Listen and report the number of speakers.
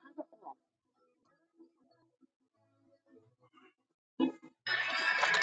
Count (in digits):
0